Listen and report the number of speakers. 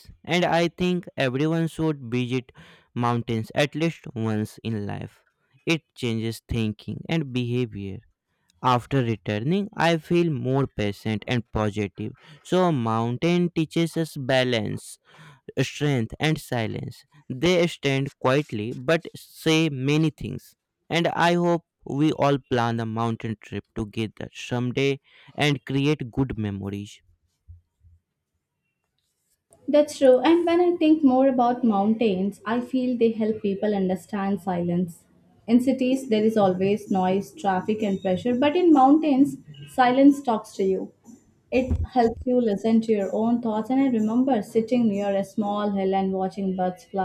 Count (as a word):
two